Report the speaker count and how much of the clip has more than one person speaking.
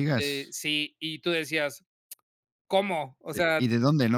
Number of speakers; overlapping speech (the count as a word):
two, about 18%